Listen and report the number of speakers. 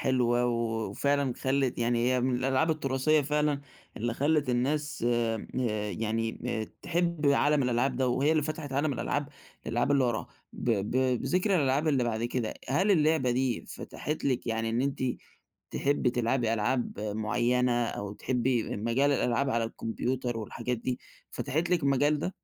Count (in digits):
1